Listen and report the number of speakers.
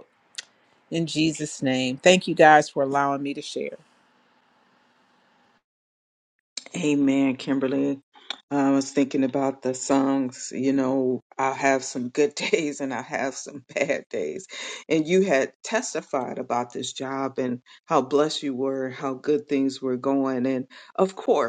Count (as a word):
two